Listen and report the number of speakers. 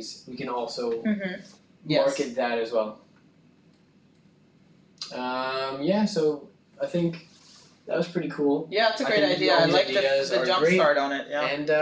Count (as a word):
two